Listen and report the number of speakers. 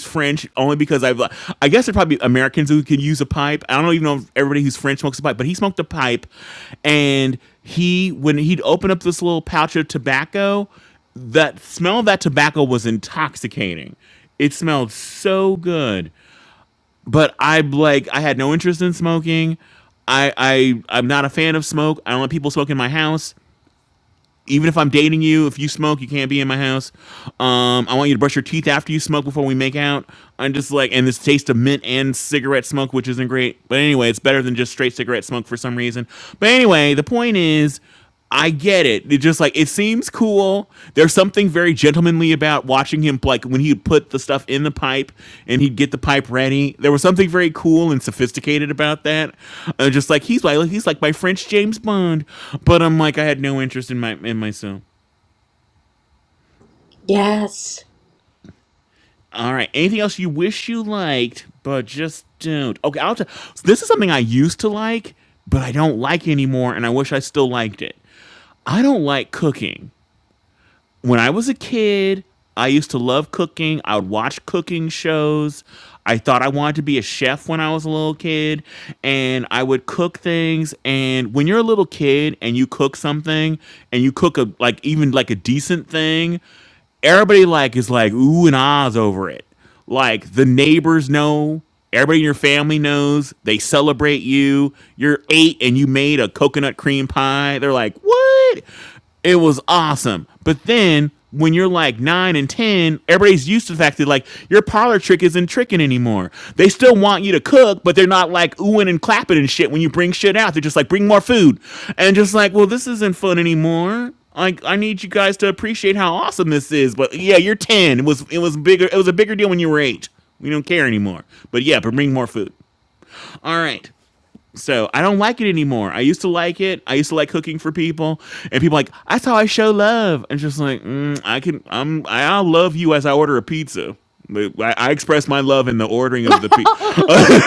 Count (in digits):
2